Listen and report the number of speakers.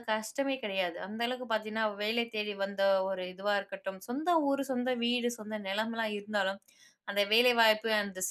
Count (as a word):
one